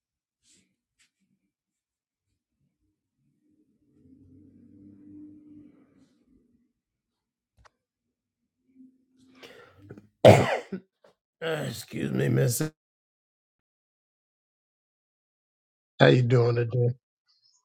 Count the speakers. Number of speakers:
one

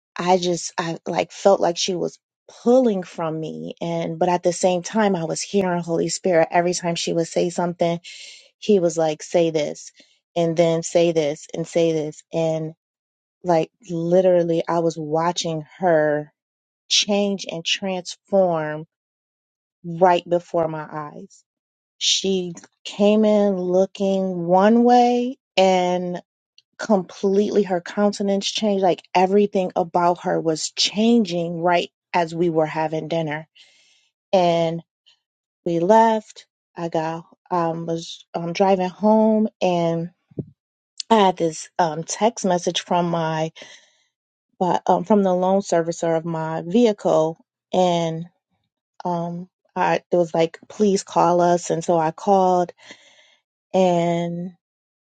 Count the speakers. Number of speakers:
one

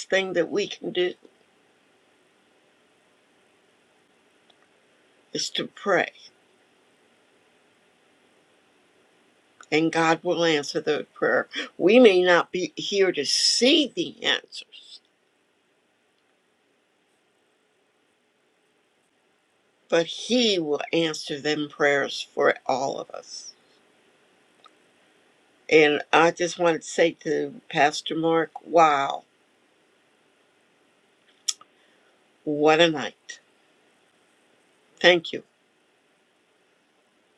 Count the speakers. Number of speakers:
one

